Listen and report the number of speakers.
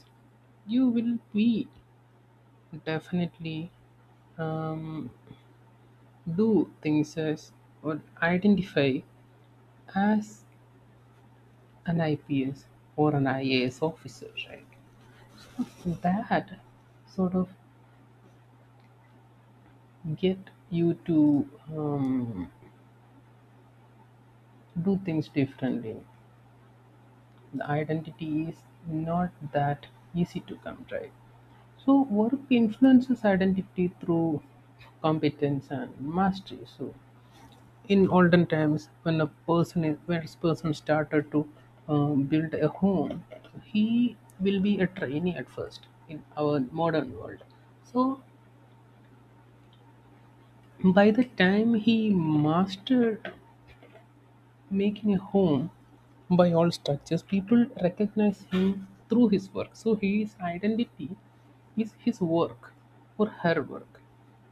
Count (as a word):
one